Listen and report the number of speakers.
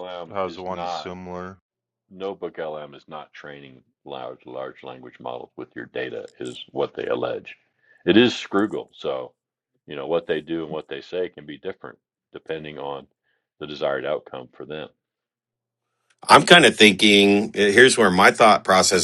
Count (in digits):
3